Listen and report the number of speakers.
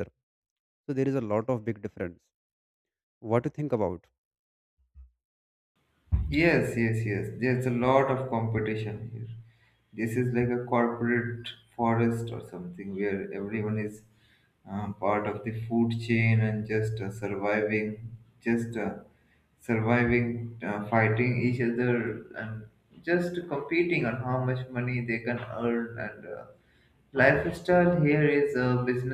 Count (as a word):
two